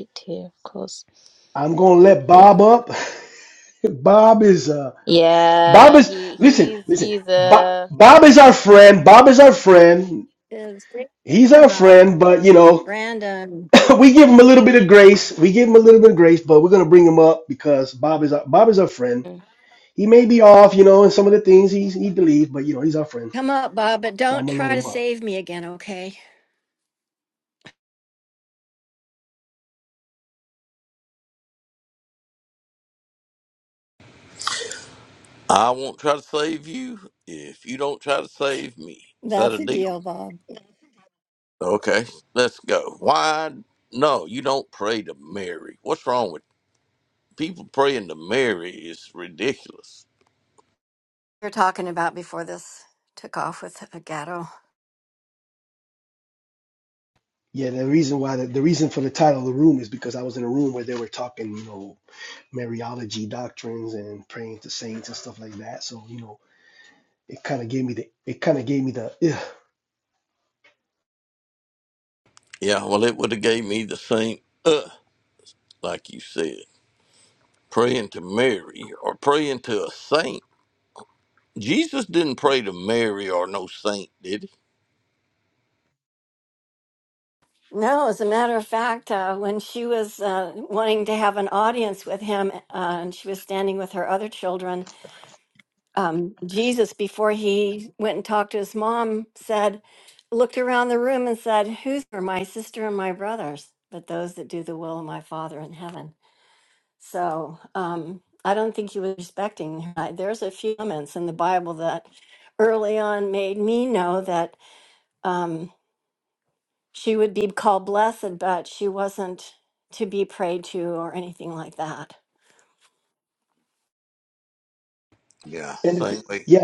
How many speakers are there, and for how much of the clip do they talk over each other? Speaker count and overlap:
four, about 3%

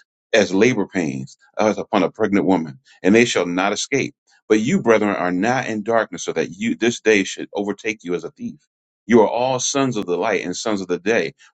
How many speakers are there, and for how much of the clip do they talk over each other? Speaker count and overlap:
one, no overlap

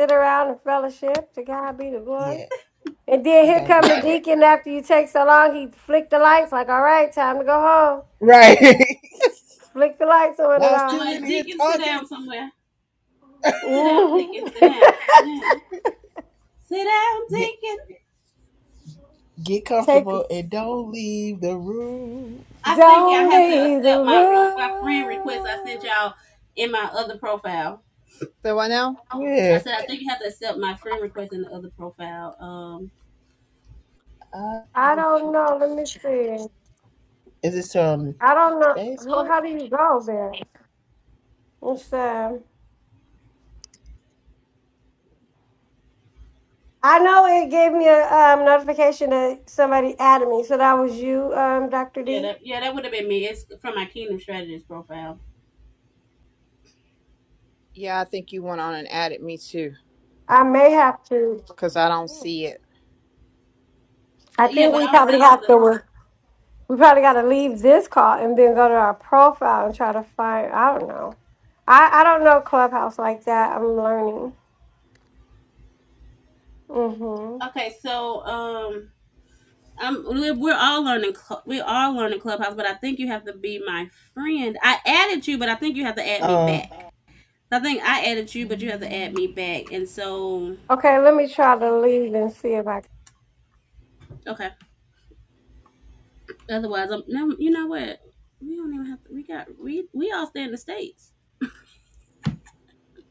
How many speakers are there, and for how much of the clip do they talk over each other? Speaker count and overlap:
four, about 8%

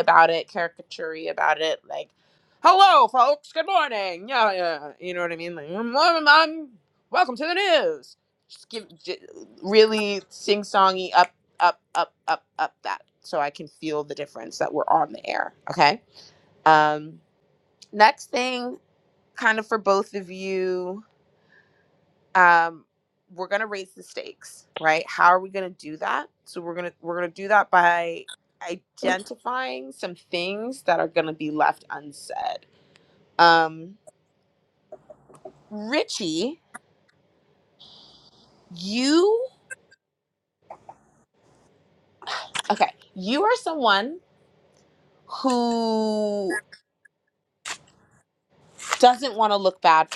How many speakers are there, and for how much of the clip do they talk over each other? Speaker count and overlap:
one, no overlap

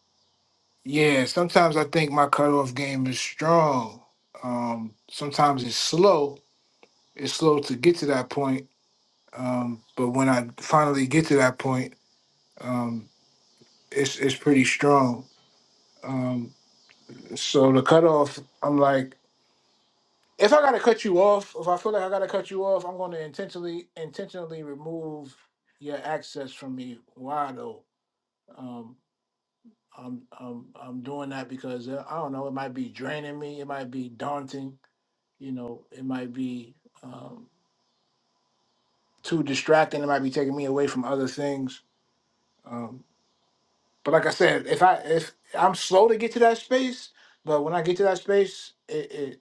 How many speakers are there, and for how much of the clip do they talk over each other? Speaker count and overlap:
one, no overlap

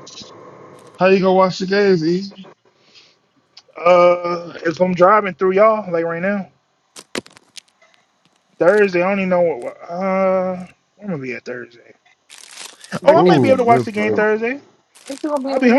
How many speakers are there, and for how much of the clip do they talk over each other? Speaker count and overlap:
three, about 10%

